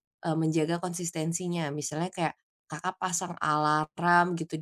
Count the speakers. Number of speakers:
one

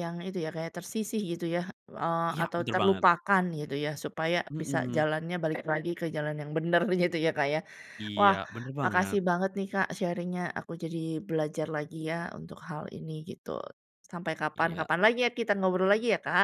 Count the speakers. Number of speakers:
two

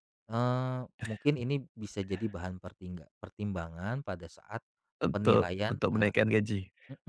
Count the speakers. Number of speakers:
two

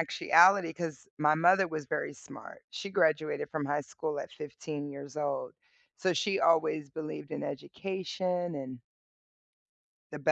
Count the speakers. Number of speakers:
one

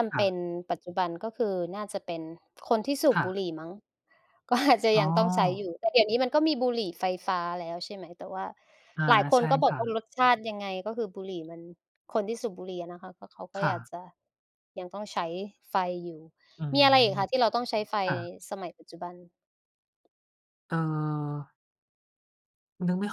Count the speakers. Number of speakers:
two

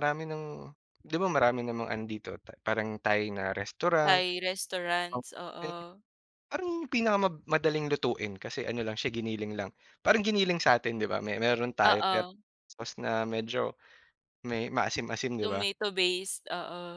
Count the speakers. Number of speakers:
two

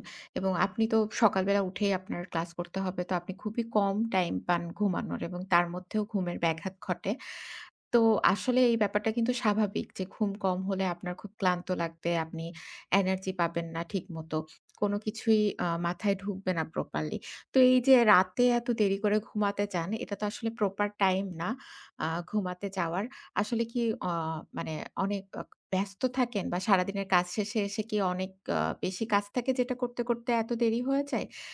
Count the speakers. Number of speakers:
one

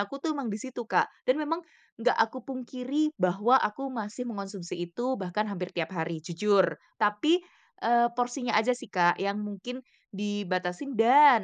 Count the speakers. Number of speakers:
one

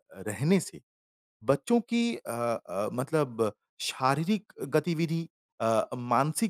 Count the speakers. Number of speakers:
one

